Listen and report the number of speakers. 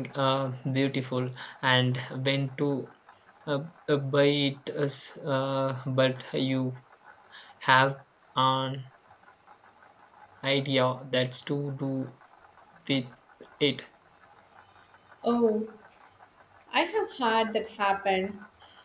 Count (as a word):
two